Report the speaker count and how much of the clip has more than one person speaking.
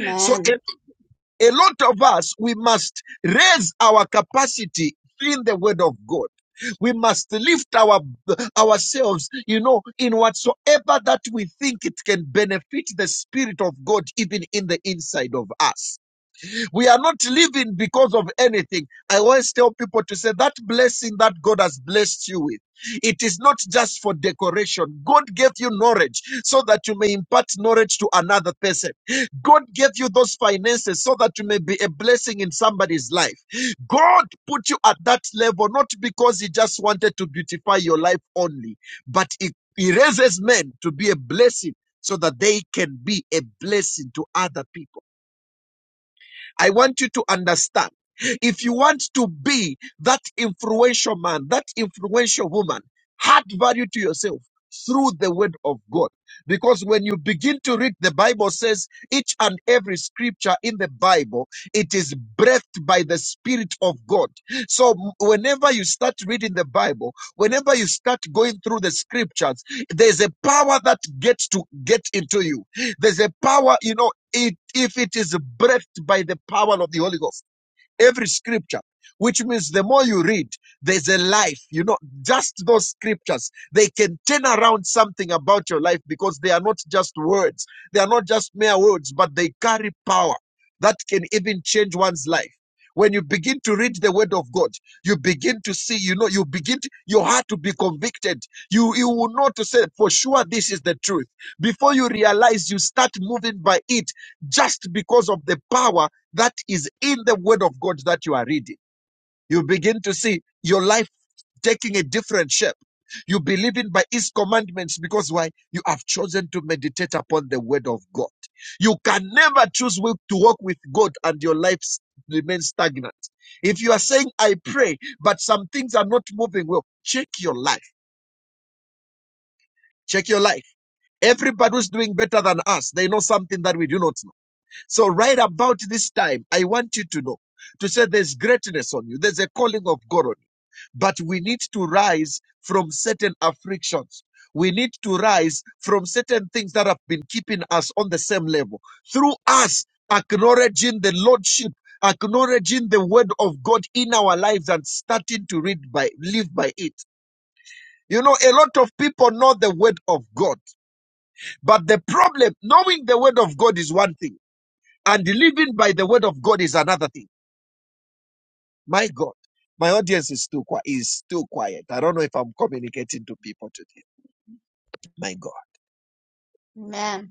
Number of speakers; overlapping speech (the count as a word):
two, under 1%